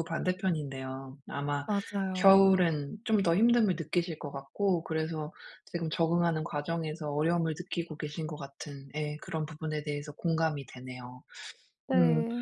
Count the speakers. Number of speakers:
2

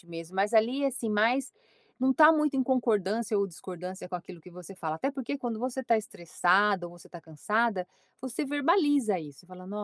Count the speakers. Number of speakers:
1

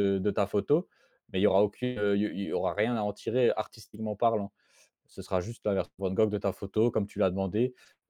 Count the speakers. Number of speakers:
1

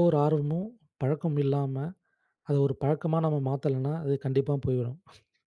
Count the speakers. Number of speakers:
1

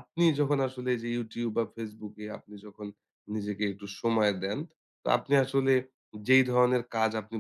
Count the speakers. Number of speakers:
1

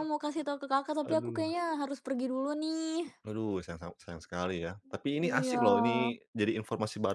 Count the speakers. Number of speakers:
2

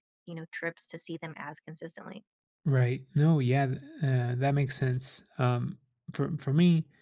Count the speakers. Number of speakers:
2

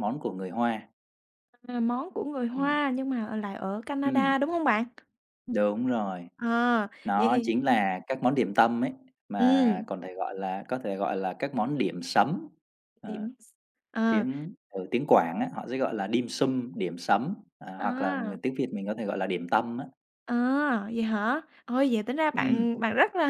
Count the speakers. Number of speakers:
2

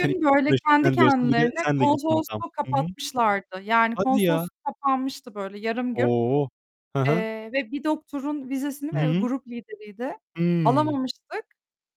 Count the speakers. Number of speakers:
2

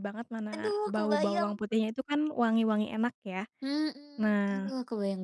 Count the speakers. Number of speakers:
2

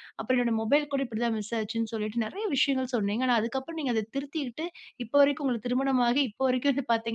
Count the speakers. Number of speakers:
1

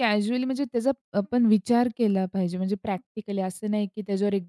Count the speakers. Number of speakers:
1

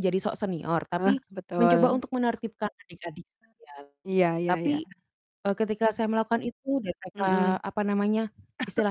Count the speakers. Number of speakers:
2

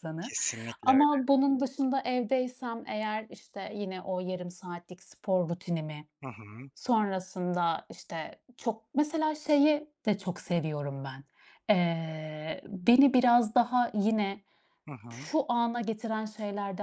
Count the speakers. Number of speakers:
2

